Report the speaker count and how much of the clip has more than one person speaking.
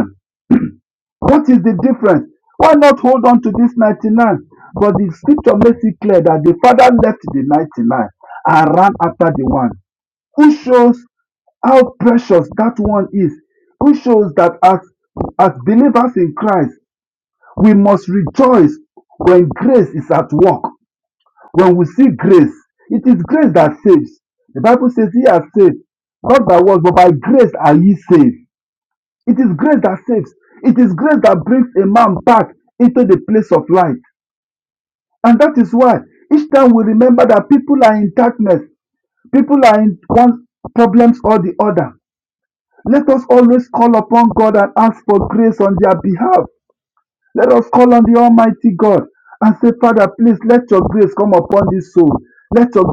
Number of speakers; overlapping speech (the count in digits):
1, no overlap